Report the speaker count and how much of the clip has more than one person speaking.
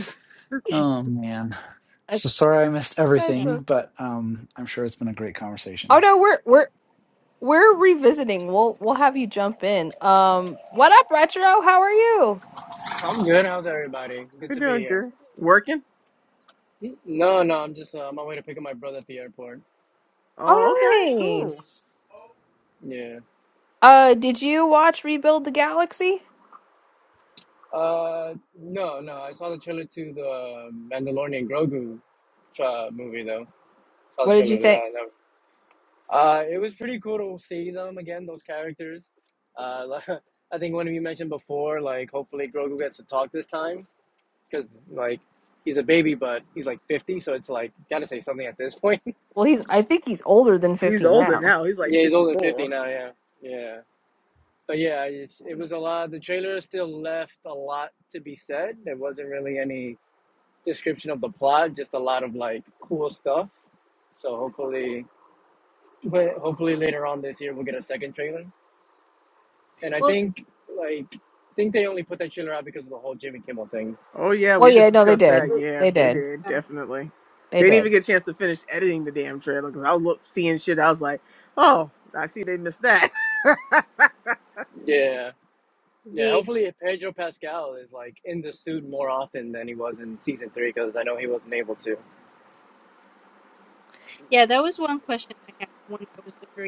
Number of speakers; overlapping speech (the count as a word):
five, about 7%